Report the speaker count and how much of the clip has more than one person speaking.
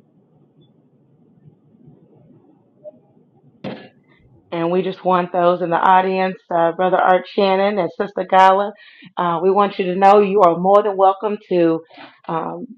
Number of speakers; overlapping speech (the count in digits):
1, no overlap